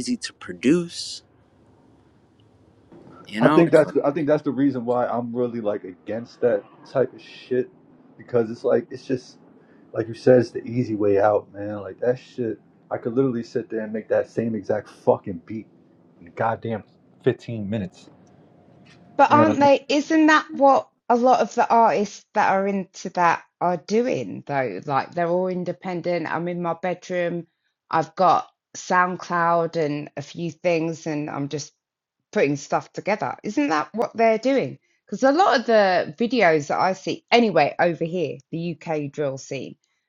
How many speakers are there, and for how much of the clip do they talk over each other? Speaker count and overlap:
three, about 2%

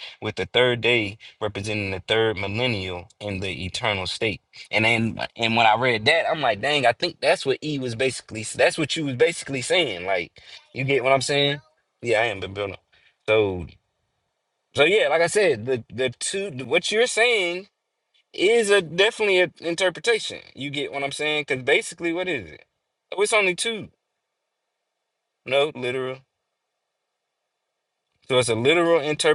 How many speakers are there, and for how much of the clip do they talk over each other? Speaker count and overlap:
one, no overlap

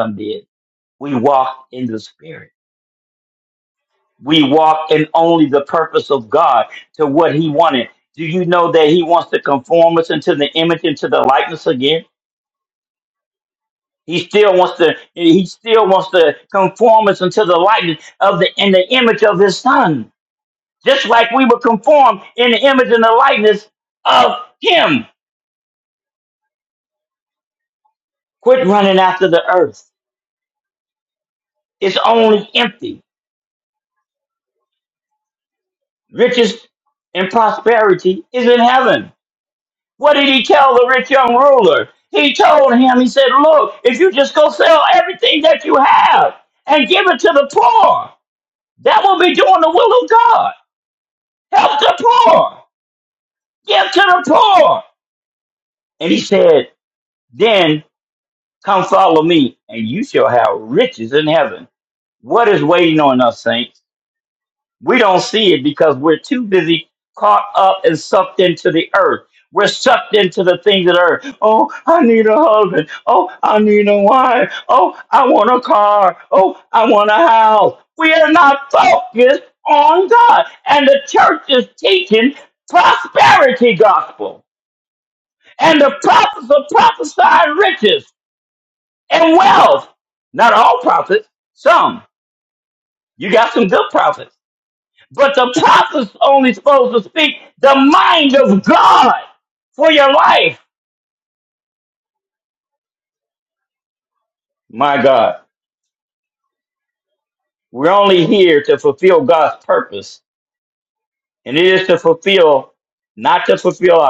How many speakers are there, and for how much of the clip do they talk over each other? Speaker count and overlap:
one, no overlap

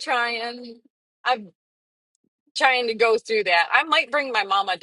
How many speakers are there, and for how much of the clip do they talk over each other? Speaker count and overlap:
one, no overlap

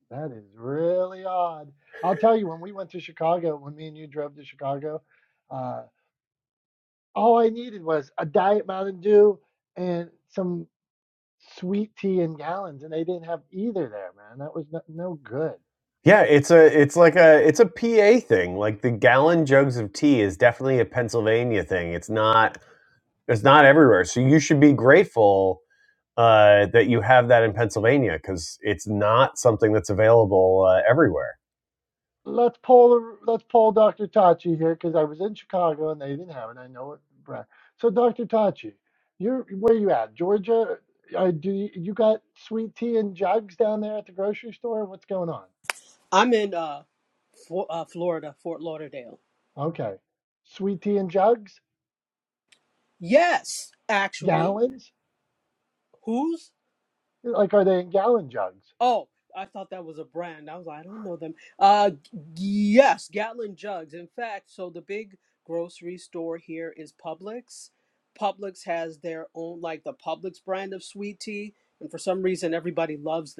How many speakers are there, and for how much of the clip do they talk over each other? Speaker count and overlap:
three, under 1%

